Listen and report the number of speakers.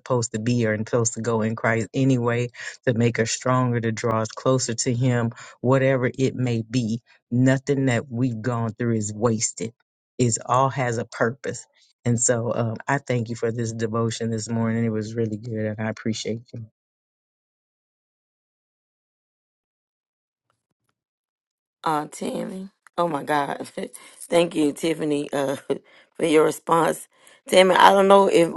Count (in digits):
2